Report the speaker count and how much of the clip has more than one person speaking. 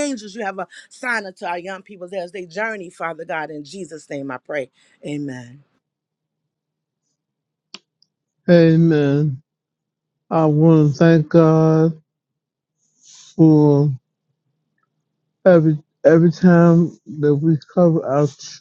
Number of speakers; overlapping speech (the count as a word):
two, no overlap